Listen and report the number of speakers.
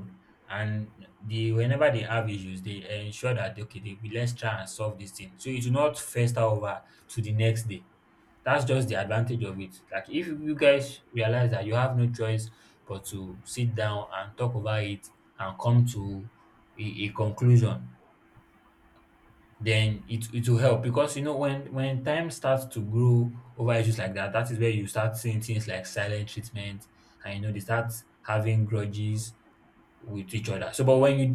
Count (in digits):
1